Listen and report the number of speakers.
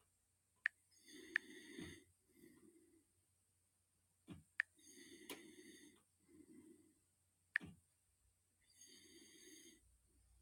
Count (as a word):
zero